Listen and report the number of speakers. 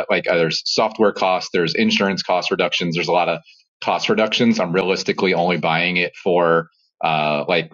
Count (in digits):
1